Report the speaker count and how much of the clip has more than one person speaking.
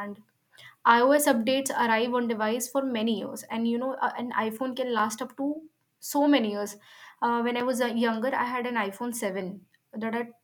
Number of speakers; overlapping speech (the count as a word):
one, no overlap